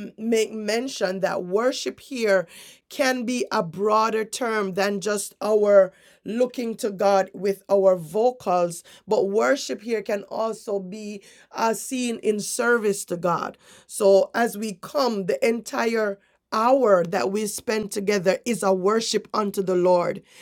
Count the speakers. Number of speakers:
1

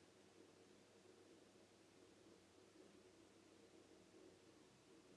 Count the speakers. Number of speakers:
0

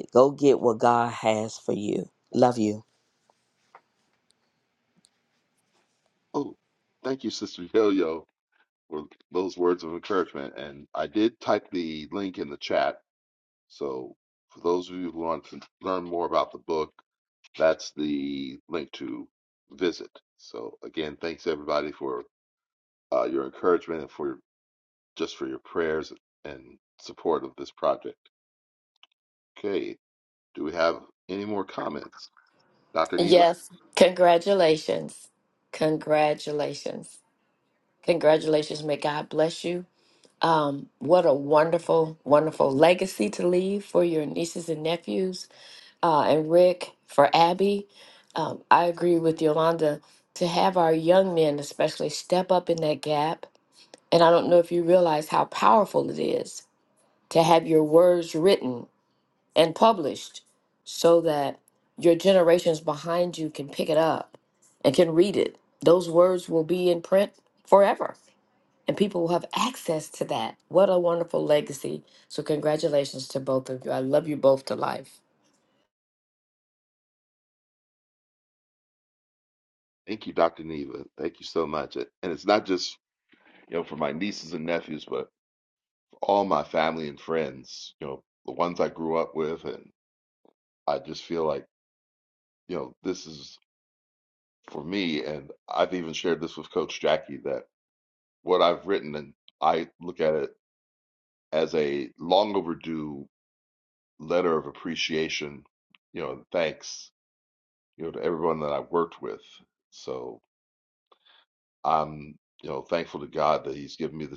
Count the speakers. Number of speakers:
3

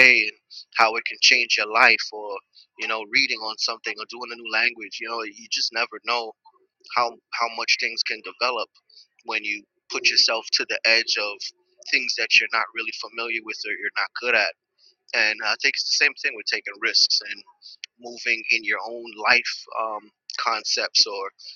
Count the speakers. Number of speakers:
1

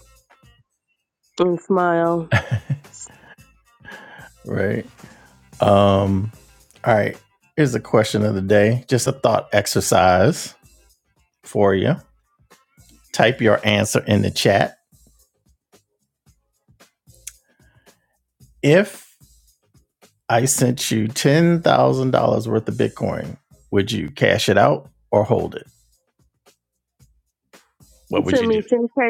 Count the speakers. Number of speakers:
2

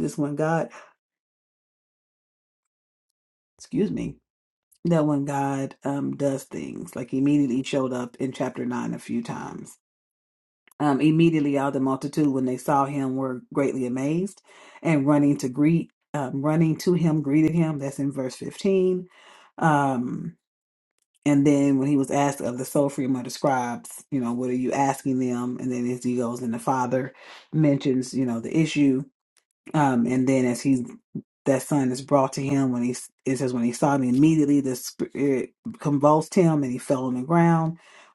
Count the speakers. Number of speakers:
1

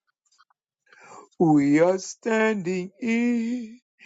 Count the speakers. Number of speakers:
1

